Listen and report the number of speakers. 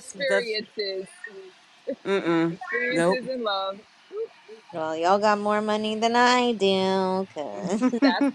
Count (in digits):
3